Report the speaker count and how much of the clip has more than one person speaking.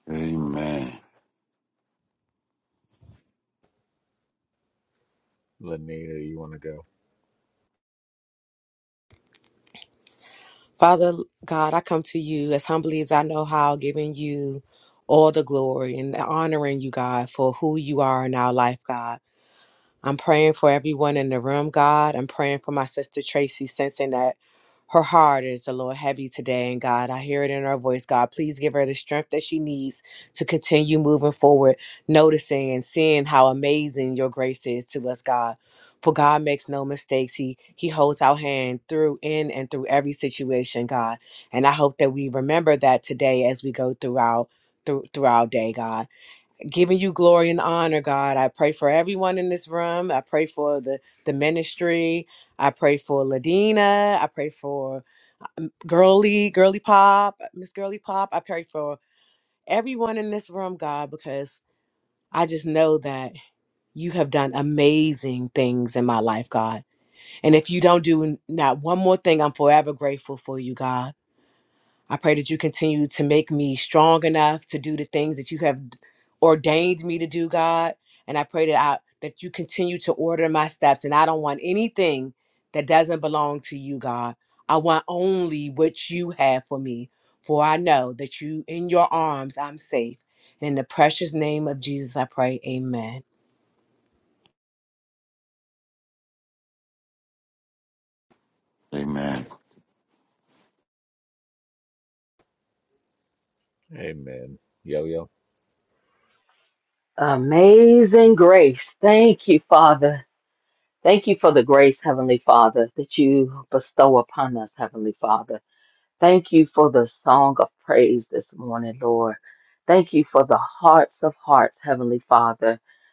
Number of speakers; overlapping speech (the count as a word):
four, no overlap